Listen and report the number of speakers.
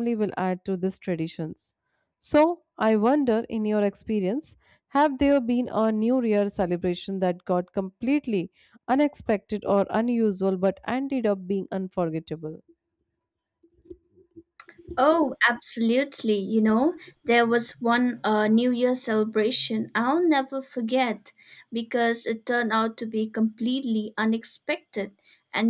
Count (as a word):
two